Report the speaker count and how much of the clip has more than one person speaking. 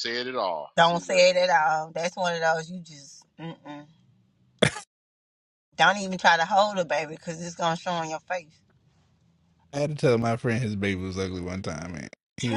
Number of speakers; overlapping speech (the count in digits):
3, about 5%